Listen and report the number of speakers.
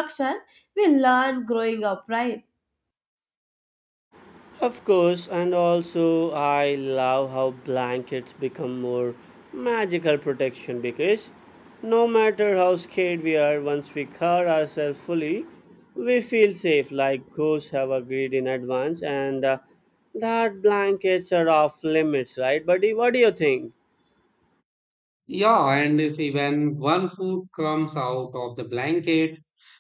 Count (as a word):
three